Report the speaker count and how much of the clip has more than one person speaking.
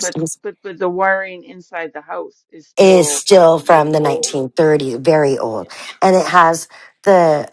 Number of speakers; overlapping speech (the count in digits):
2, about 27%